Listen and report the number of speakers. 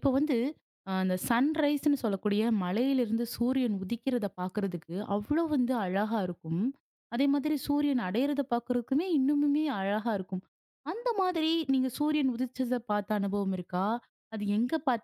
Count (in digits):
1